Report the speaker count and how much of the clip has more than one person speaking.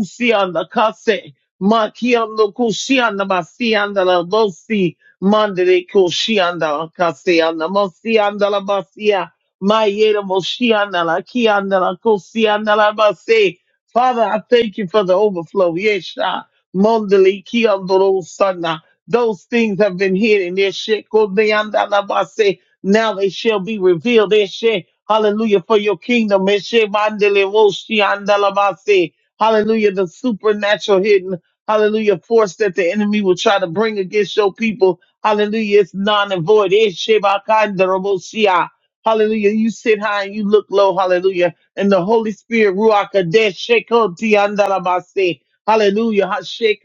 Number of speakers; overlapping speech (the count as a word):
one, no overlap